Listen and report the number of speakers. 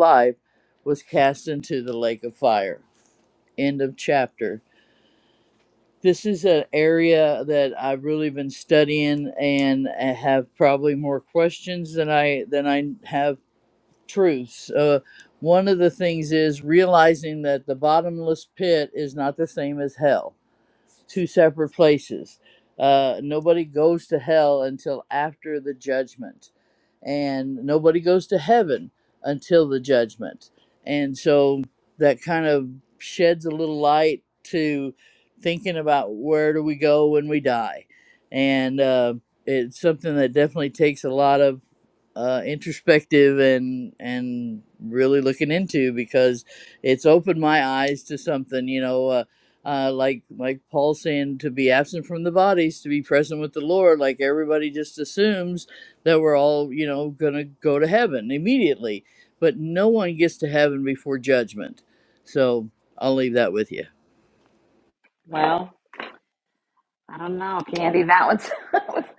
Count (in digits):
2